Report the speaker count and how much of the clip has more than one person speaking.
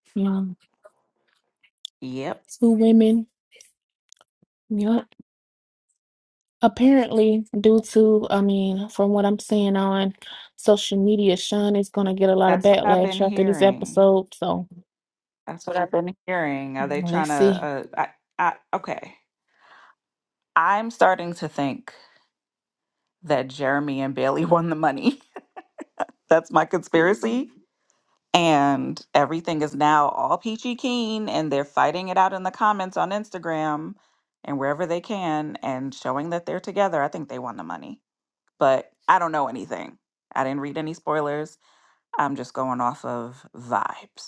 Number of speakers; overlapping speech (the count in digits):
2, about 5%